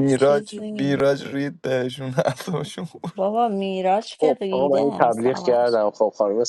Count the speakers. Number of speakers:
three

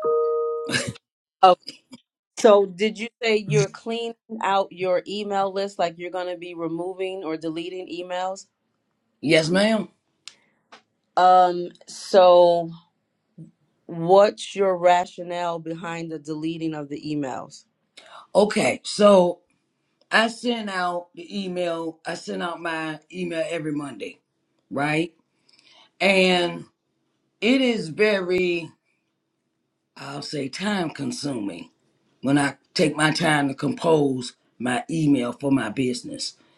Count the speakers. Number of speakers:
two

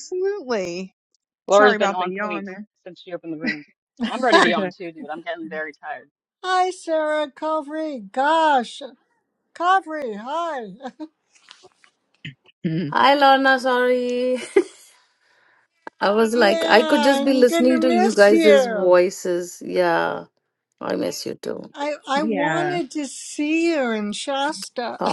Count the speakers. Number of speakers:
four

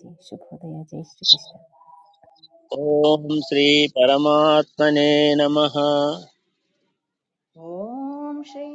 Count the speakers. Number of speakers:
three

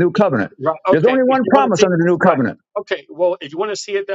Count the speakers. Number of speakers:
two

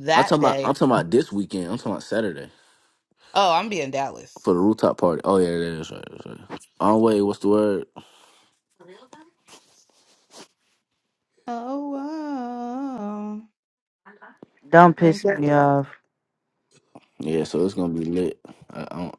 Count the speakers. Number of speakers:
three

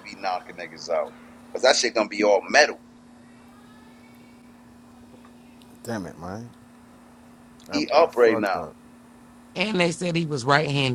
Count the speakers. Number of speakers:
three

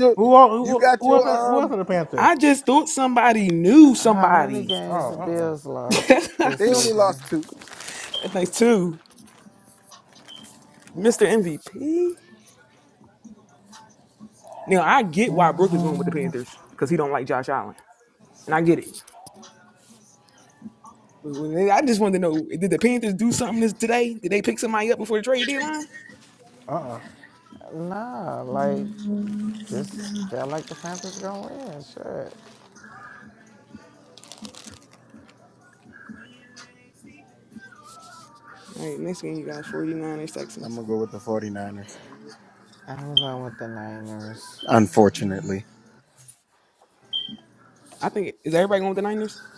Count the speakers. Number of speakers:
four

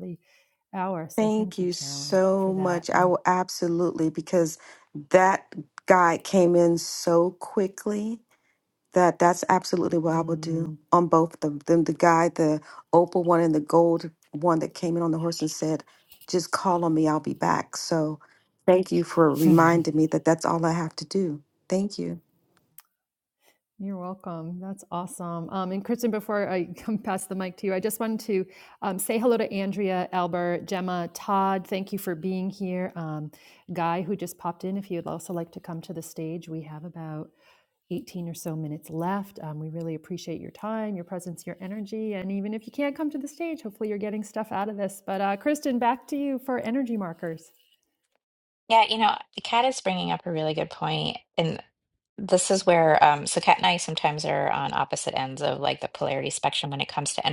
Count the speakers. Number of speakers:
three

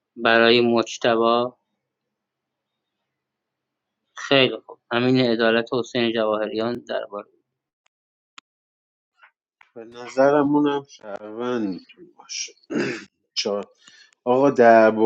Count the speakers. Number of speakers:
two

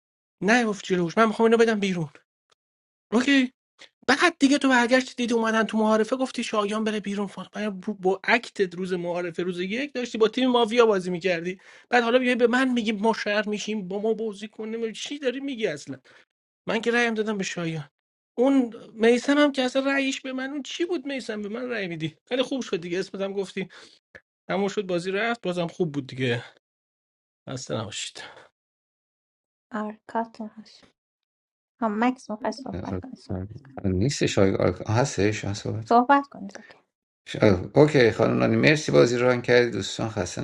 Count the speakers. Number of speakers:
three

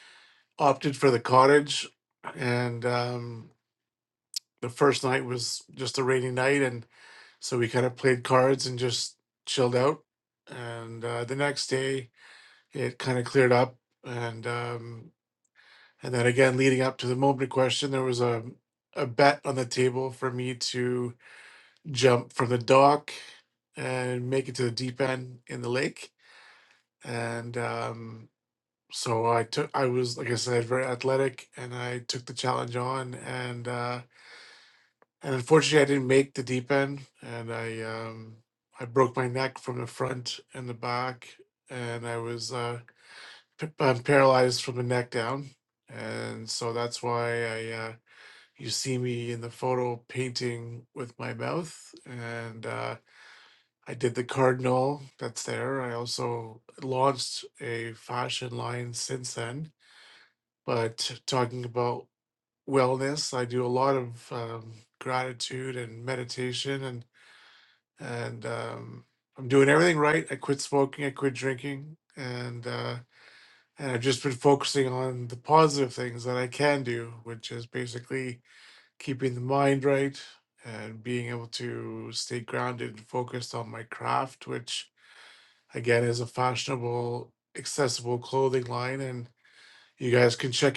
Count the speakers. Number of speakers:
one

